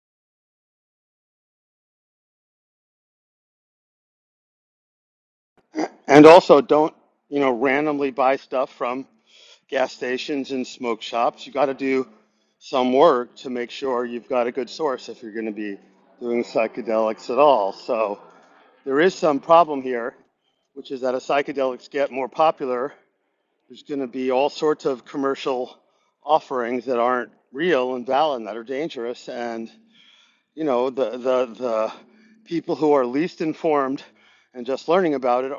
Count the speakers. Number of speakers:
1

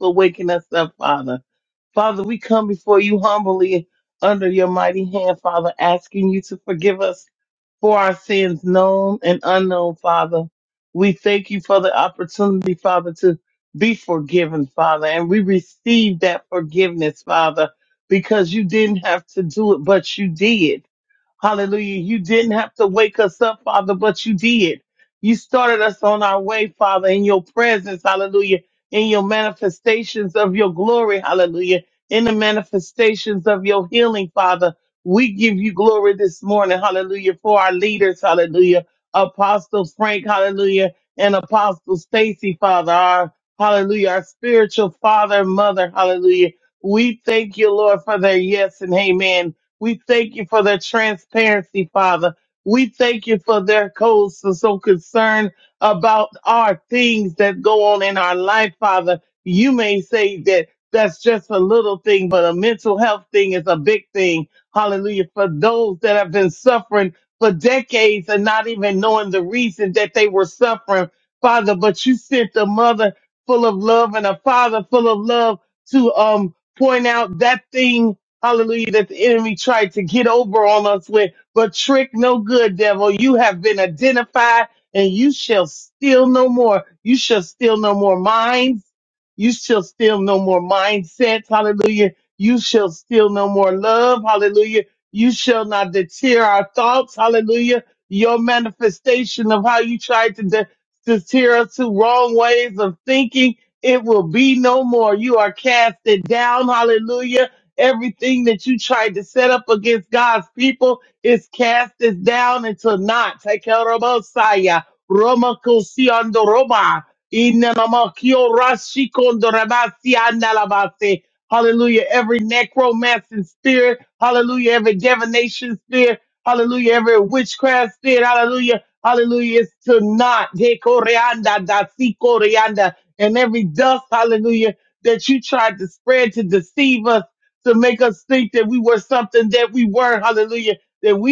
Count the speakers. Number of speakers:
1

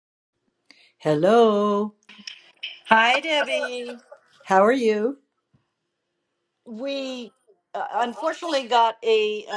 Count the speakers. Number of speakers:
2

